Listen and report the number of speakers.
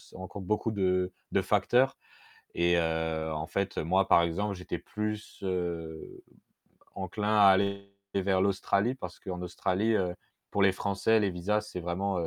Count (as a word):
one